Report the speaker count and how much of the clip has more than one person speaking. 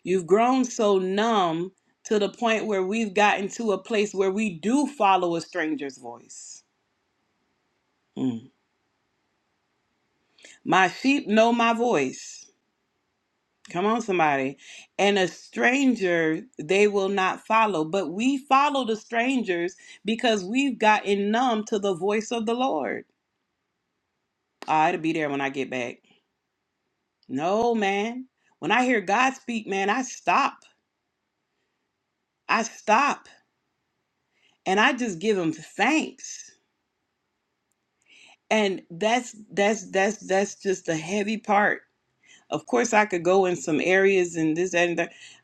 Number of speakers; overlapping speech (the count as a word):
one, no overlap